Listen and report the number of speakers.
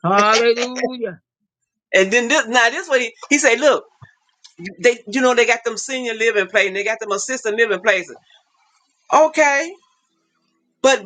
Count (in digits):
2